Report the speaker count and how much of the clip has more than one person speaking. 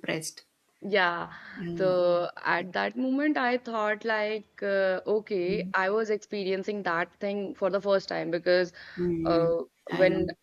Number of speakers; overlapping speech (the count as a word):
two, about 14%